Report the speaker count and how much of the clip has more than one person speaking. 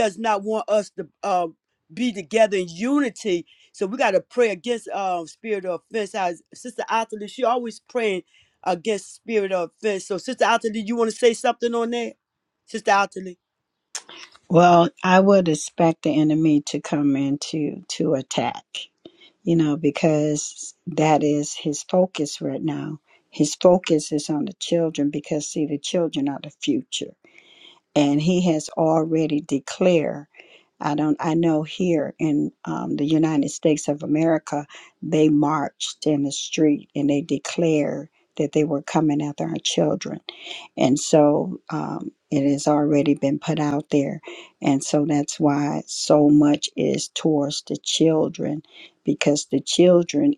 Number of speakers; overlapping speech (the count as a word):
two, no overlap